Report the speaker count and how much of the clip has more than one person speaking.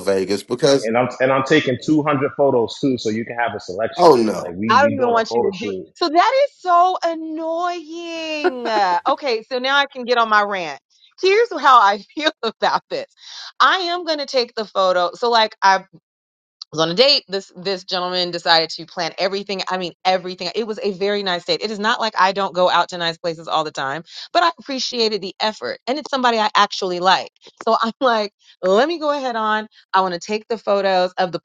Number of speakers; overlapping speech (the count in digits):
3, about 6%